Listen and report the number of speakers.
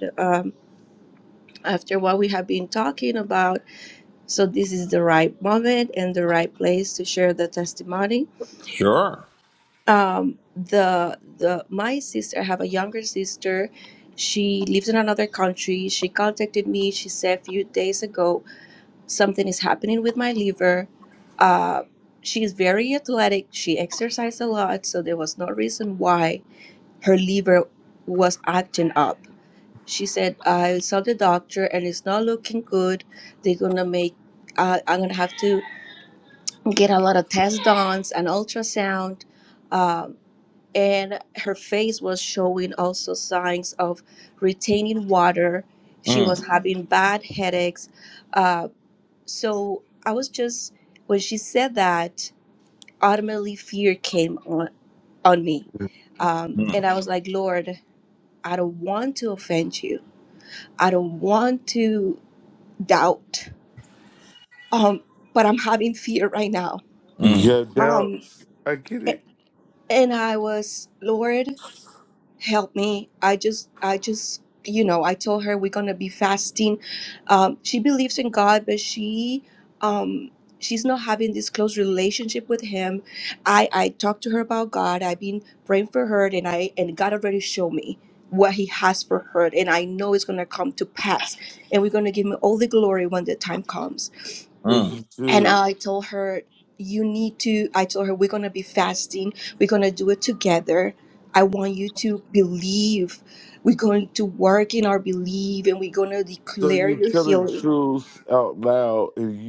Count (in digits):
3